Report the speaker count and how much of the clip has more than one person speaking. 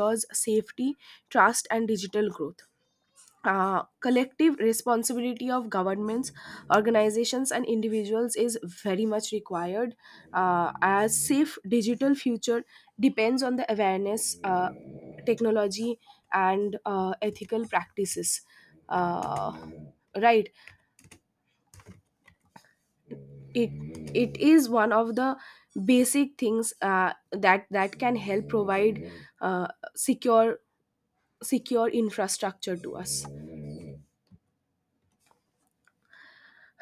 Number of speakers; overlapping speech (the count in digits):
1, no overlap